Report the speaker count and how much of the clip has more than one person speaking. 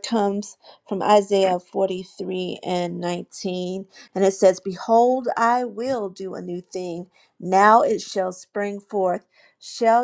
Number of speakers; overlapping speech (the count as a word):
one, no overlap